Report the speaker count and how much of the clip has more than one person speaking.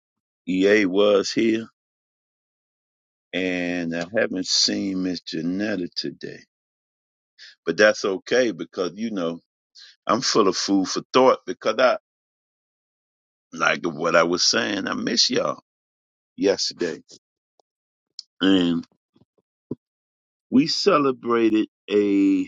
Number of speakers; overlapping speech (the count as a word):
one, no overlap